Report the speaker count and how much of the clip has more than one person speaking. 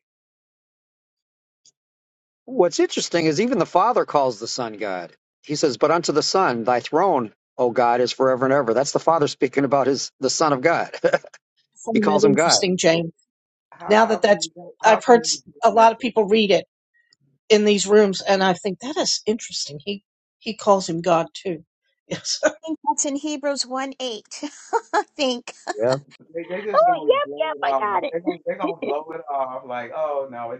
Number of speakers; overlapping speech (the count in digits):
4, about 12%